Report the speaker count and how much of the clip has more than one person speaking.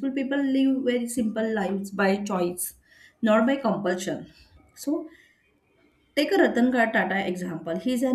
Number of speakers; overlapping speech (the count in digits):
1, no overlap